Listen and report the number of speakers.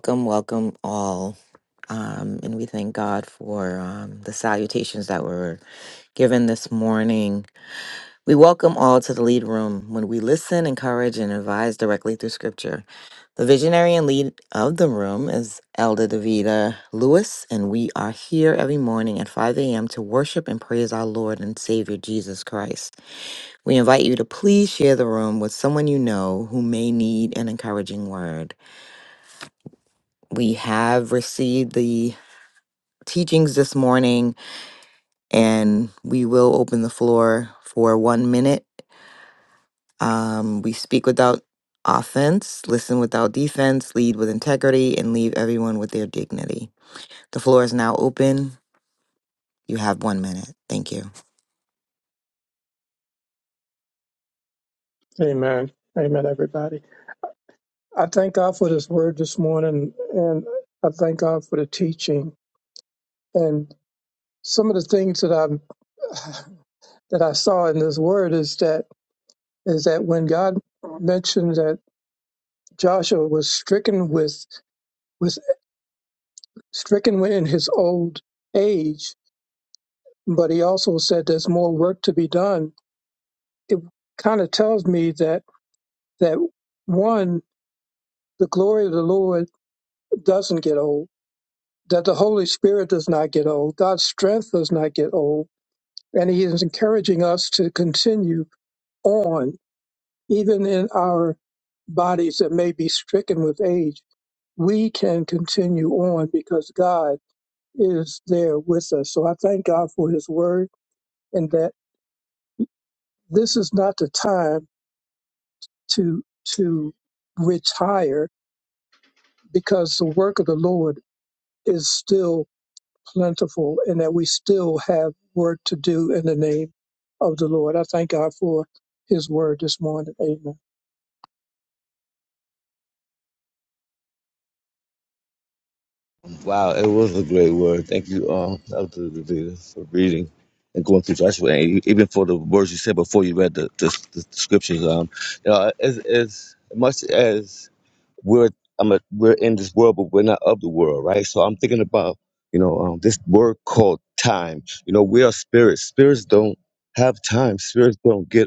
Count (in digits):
3